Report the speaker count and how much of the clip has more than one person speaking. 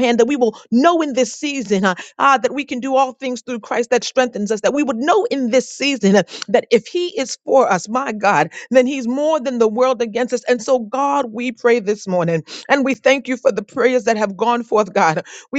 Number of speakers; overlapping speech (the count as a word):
one, no overlap